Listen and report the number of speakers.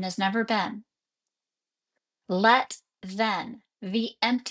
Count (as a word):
one